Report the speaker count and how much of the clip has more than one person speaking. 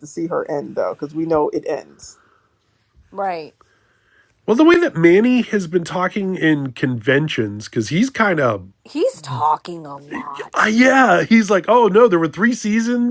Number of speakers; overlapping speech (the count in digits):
3, no overlap